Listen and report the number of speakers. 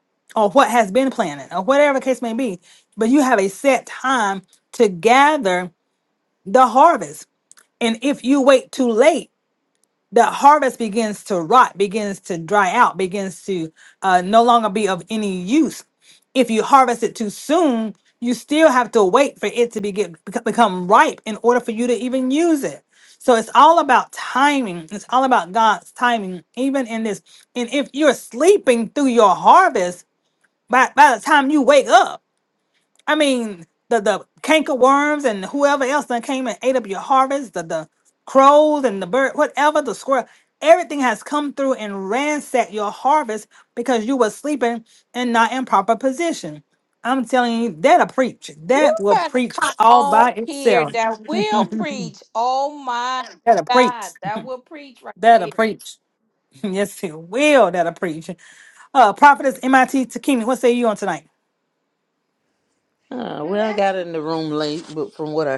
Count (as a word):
three